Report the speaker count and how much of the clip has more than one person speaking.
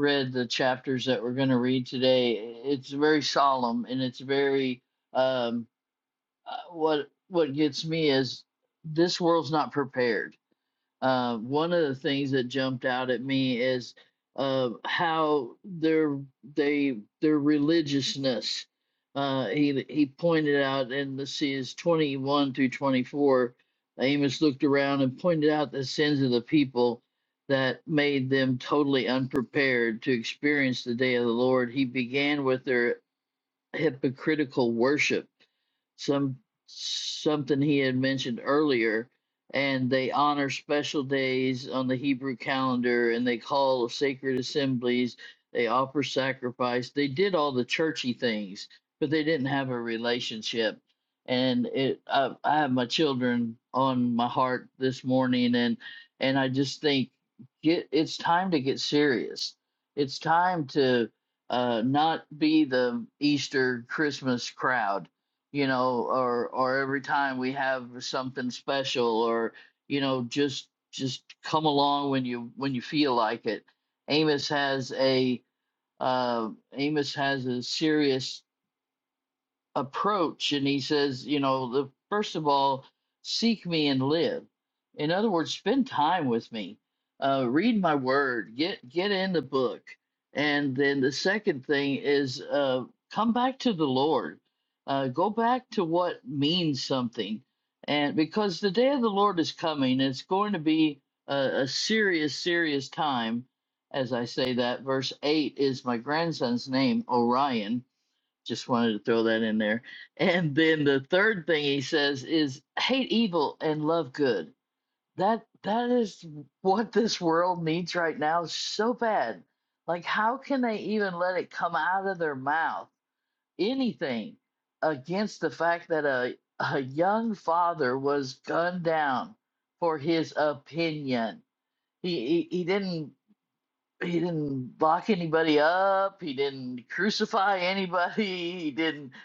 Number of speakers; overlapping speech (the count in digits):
1, no overlap